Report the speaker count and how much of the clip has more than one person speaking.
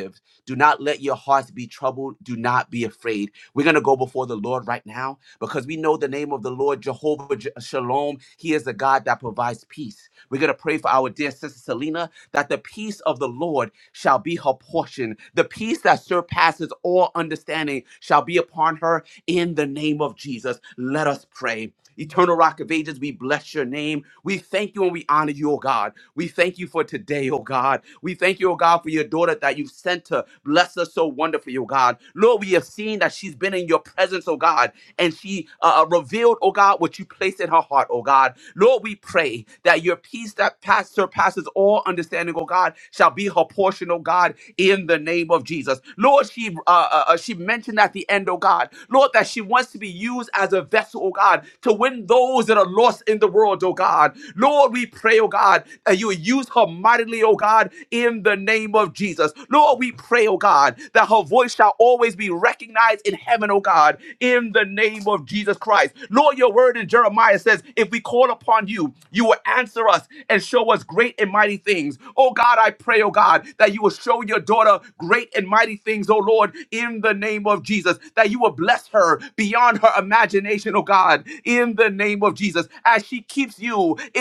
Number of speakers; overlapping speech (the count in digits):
1, no overlap